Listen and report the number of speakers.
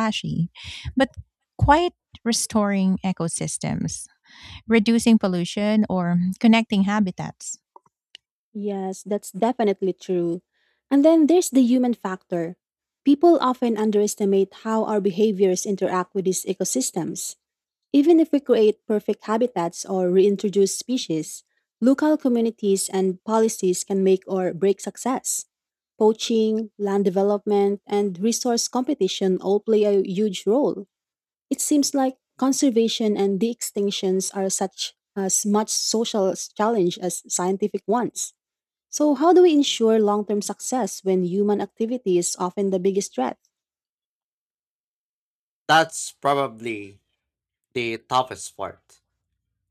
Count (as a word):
three